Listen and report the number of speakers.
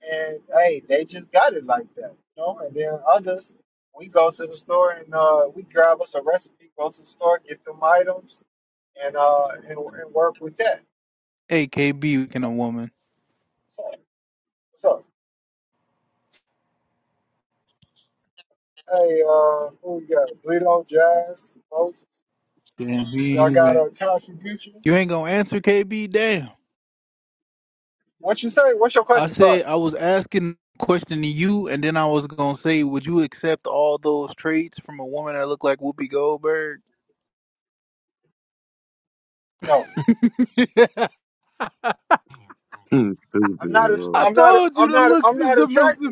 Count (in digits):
3